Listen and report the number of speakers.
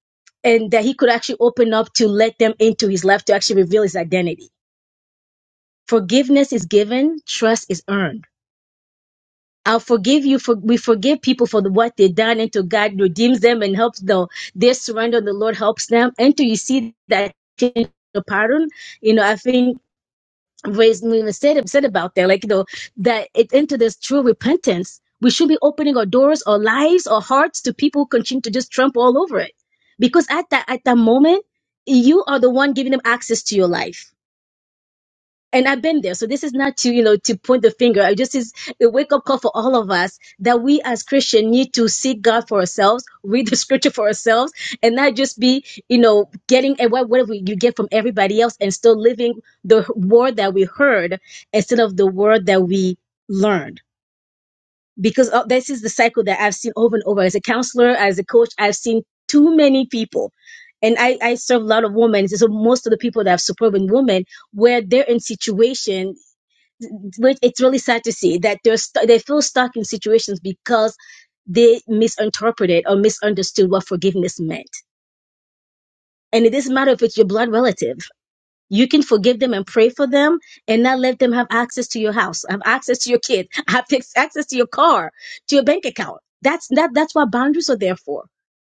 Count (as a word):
one